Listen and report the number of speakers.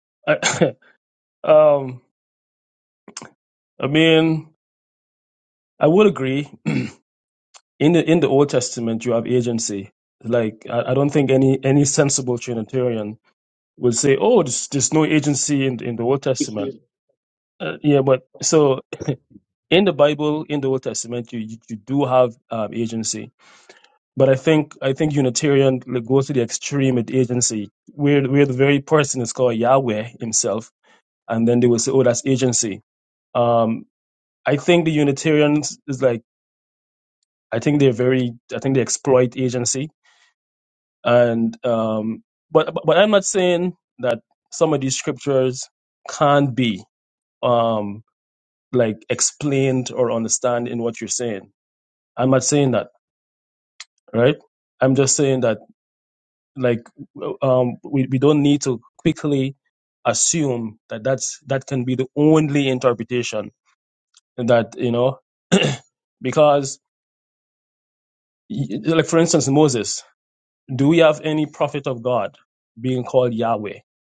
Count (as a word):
one